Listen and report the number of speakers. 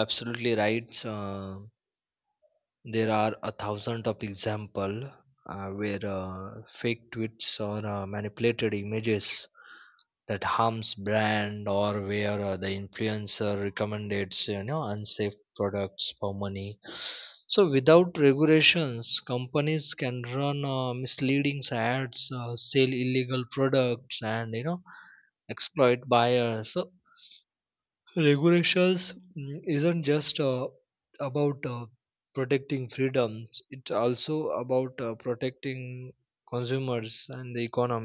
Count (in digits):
1